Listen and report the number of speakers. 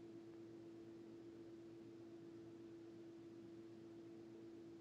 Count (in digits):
0